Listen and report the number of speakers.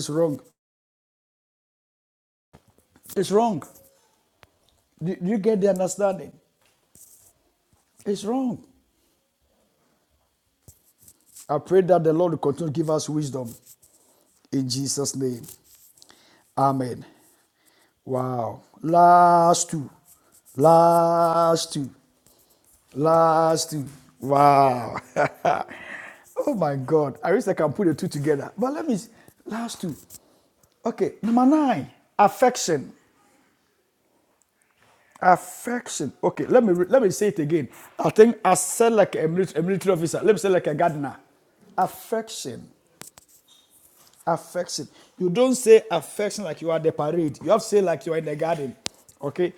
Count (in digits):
1